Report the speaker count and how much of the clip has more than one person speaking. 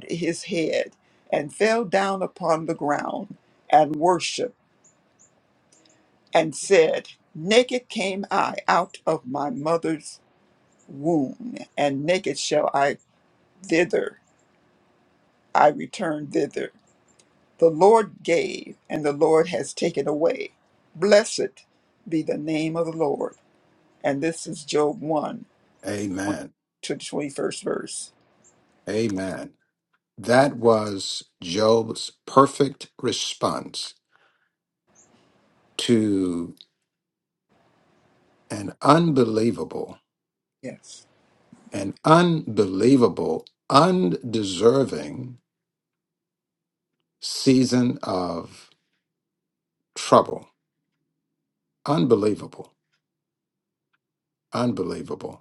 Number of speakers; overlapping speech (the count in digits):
2, no overlap